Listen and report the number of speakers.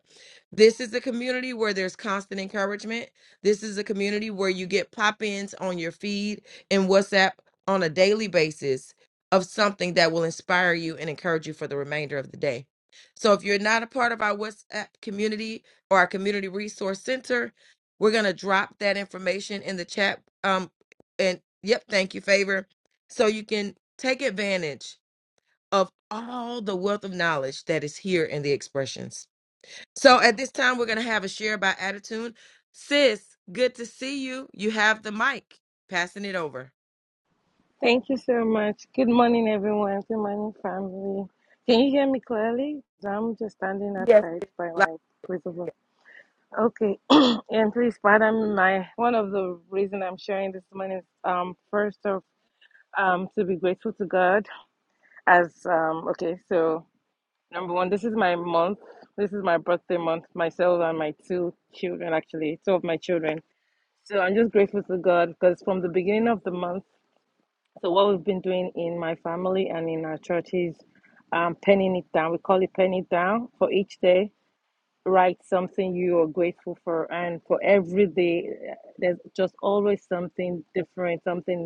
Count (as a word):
two